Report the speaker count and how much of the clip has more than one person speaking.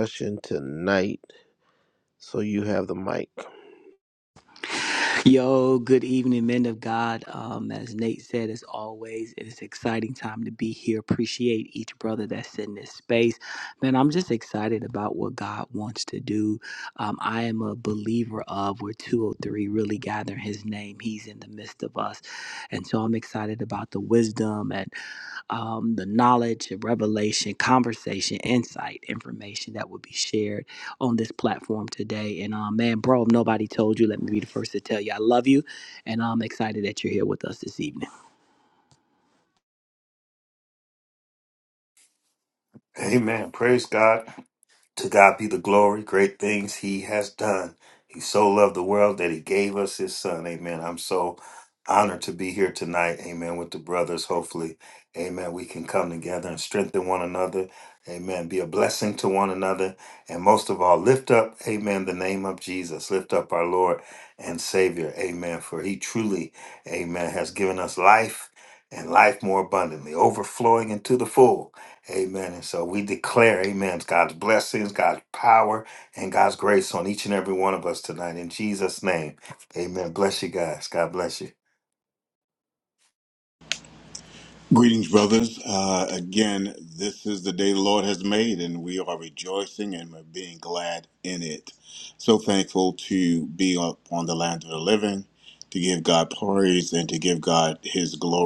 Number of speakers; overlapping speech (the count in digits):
4, no overlap